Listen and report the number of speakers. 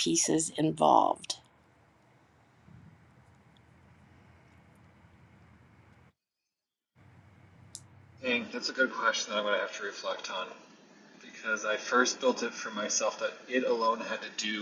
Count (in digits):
2